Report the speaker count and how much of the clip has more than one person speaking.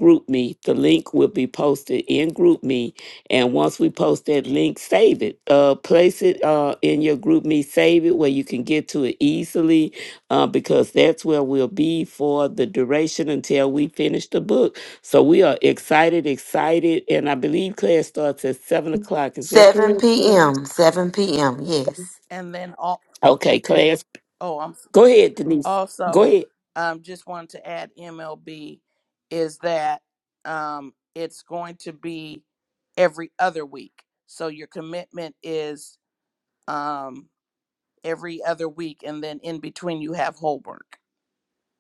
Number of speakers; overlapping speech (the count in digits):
3, about 3%